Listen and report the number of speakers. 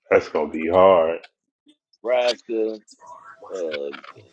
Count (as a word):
two